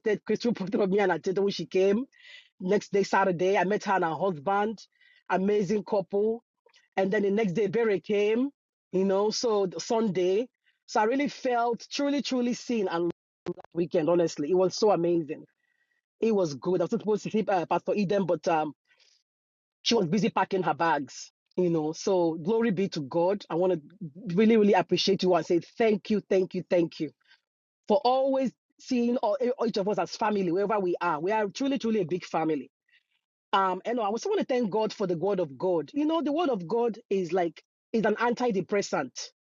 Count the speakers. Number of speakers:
one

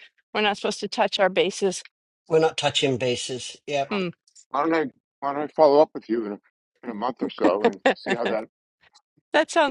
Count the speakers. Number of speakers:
three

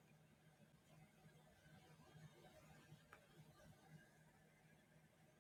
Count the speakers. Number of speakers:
zero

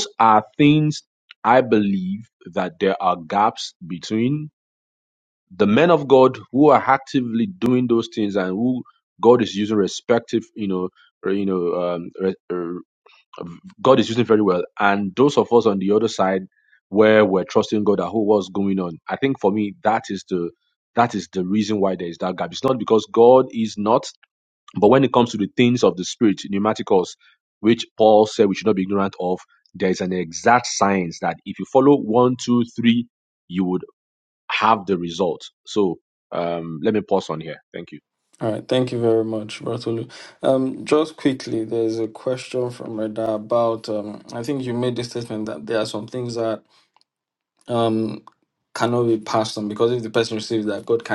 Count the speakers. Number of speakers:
two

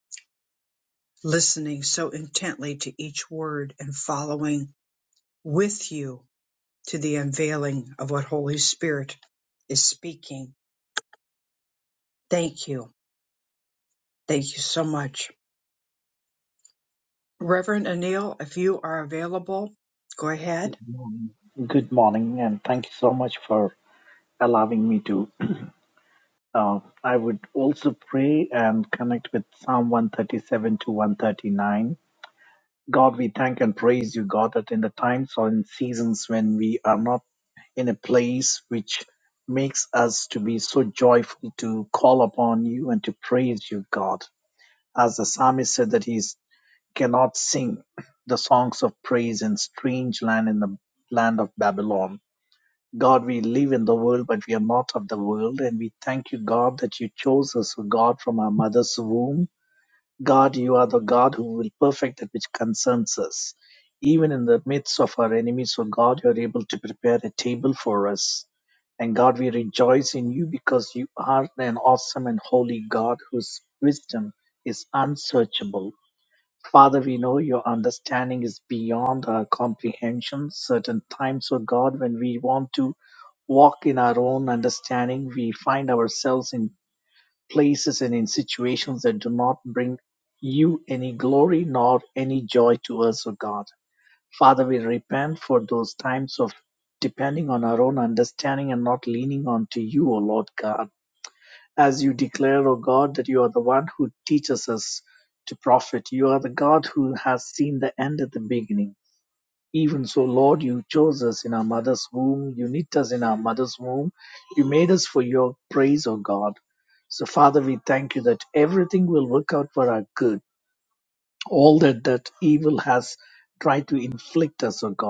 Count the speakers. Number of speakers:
two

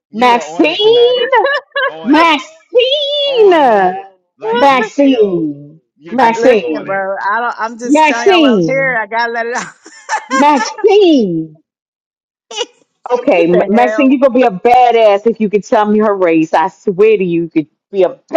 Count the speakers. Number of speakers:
three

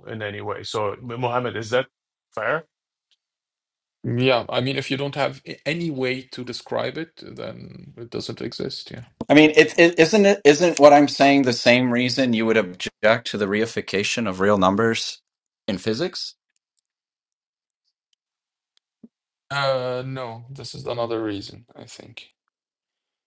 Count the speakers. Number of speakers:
three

